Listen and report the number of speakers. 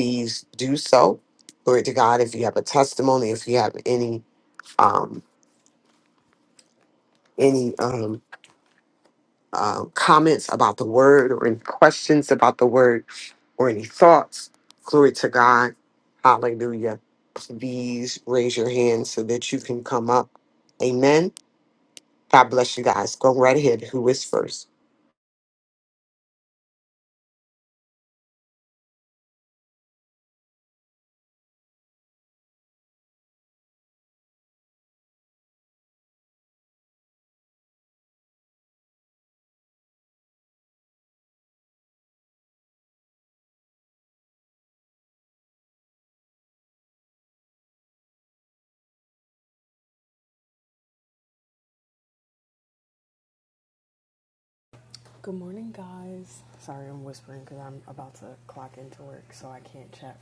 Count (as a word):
two